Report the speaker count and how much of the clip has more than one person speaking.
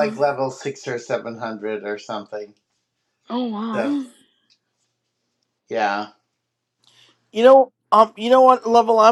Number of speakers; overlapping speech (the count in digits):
3, about 5%